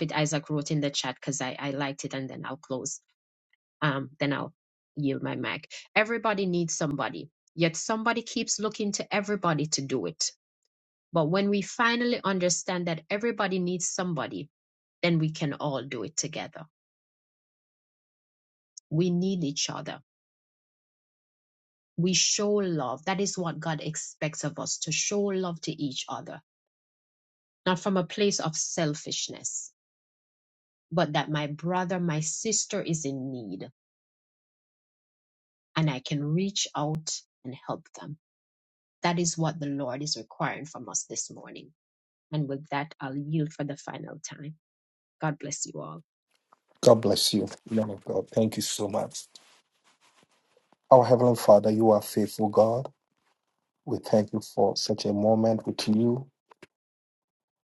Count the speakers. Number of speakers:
two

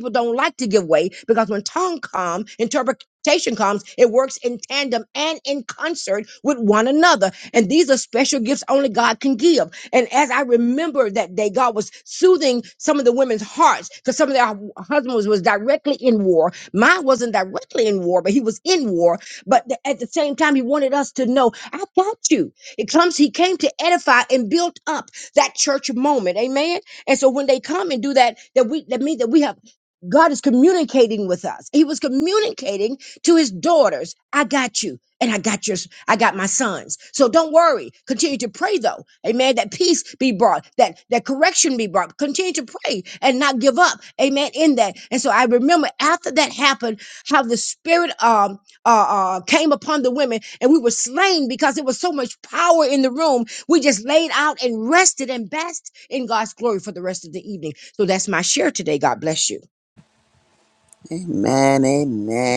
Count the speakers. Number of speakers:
two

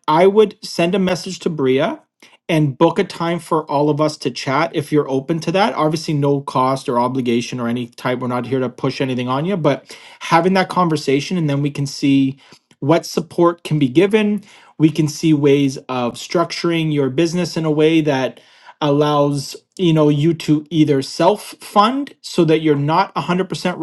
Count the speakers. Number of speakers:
one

